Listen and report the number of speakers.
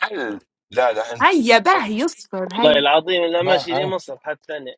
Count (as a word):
three